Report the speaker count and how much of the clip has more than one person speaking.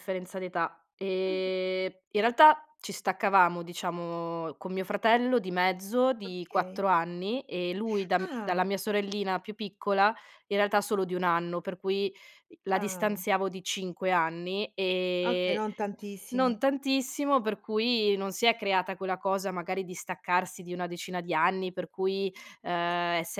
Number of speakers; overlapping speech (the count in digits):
2, about 9%